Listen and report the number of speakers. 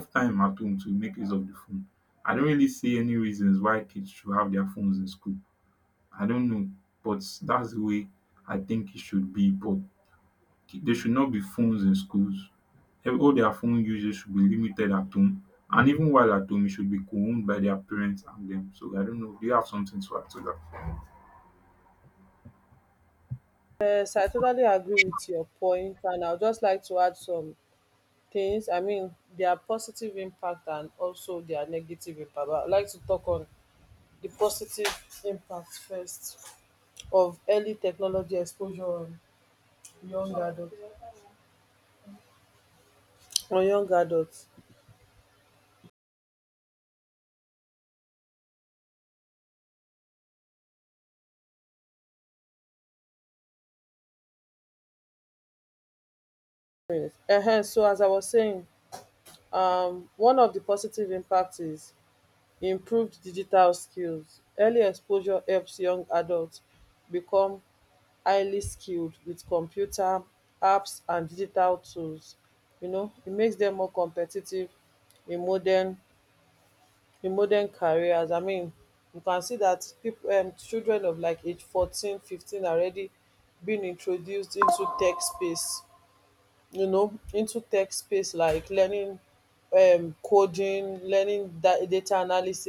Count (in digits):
2